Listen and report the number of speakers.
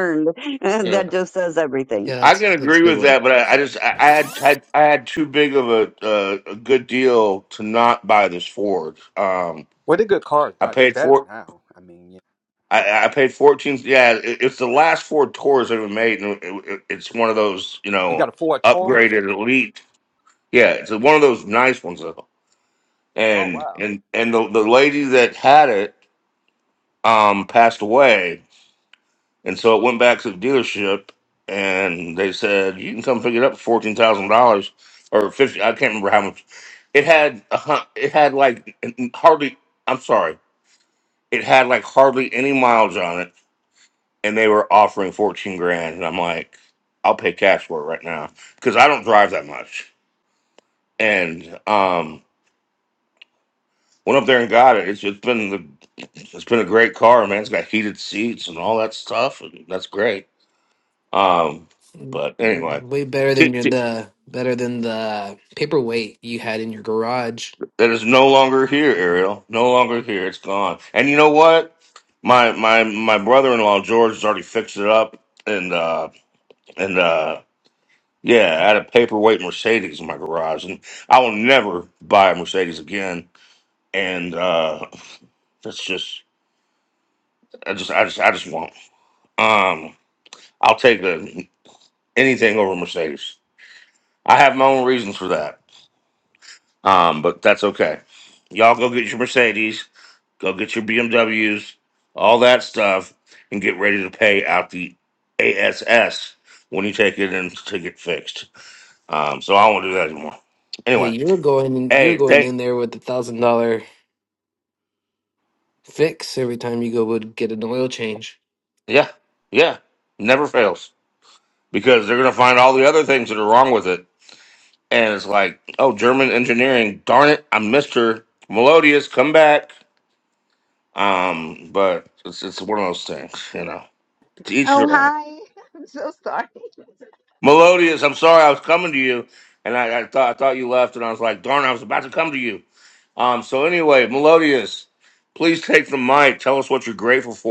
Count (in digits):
5